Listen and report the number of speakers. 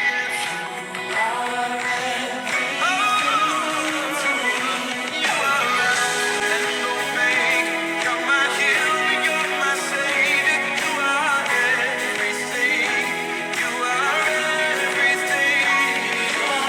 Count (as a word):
zero